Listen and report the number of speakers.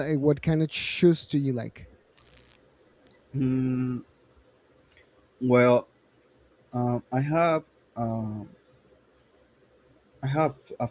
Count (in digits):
2